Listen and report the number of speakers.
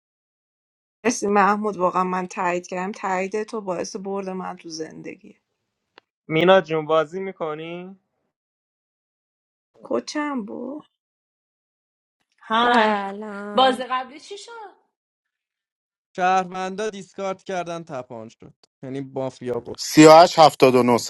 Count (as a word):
six